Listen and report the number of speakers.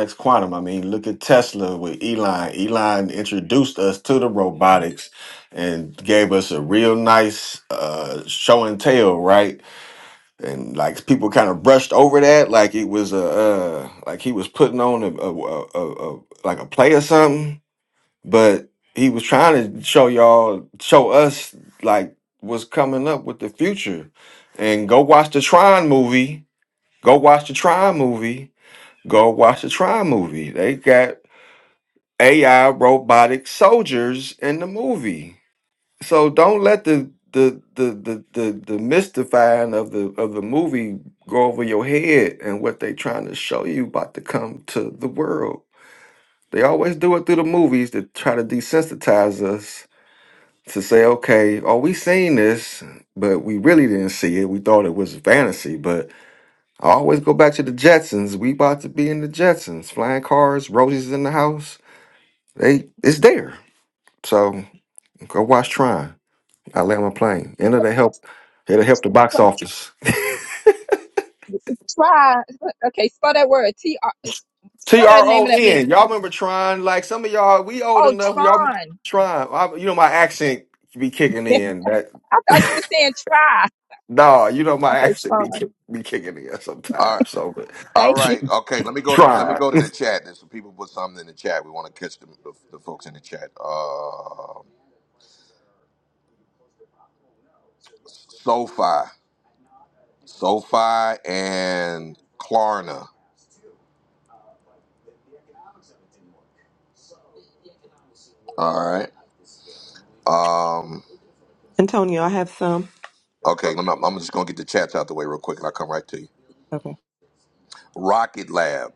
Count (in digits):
4